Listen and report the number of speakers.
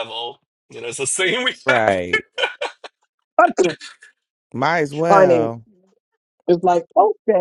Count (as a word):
three